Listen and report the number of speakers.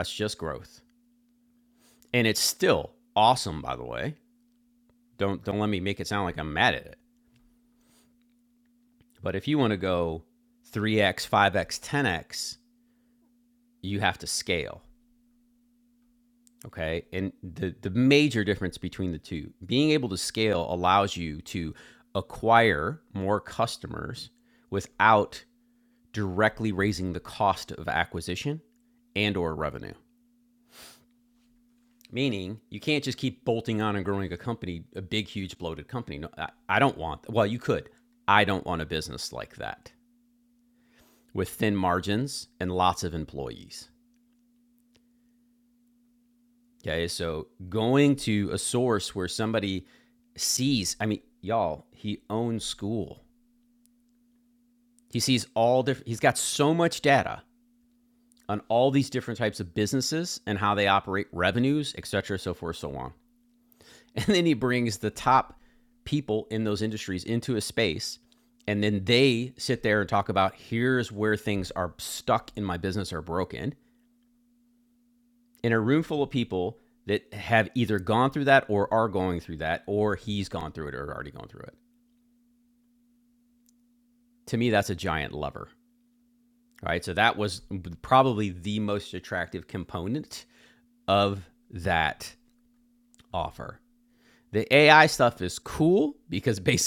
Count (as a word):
one